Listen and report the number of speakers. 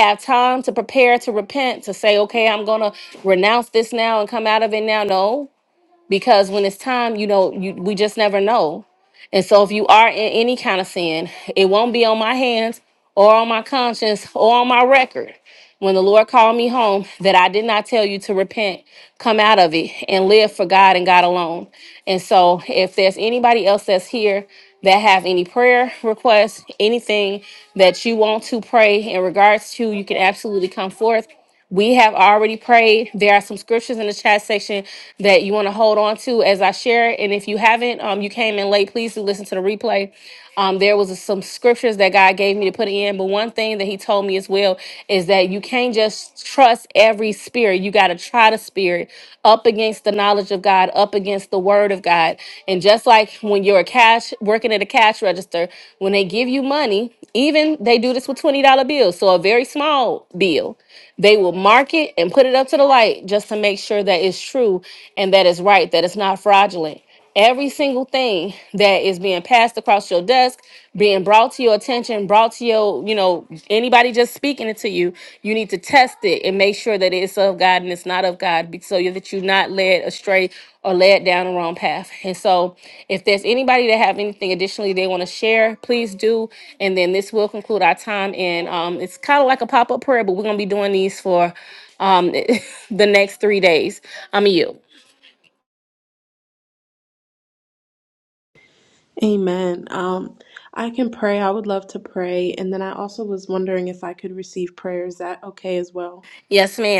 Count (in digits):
2